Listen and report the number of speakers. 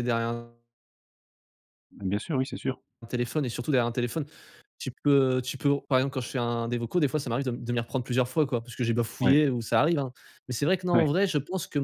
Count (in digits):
2